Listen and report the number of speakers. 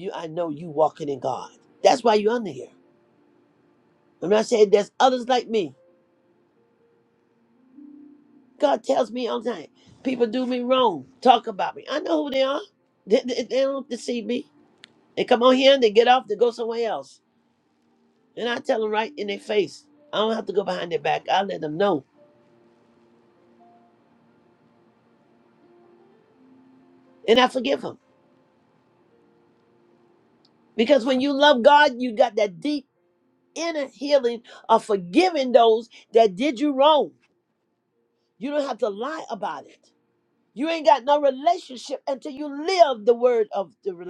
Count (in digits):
1